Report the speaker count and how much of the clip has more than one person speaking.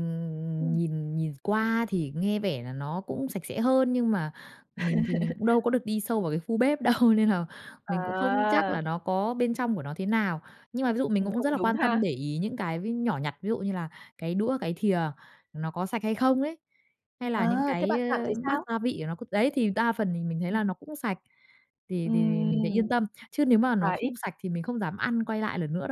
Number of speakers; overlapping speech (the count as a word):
two, about 15%